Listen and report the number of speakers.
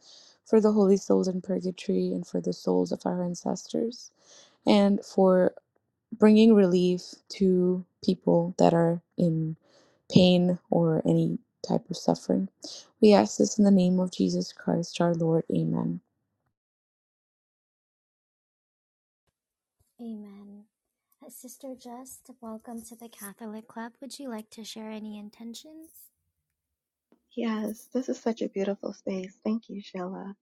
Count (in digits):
3